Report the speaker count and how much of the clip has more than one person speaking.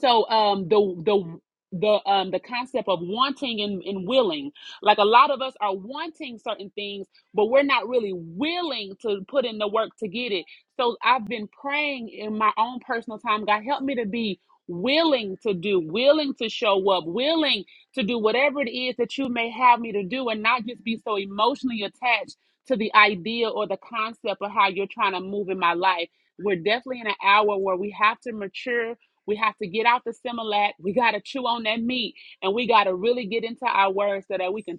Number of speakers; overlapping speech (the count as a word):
one, no overlap